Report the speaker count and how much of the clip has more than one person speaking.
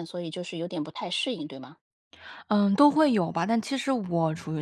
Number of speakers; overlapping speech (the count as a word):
two, no overlap